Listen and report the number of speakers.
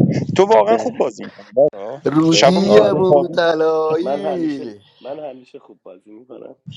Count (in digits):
3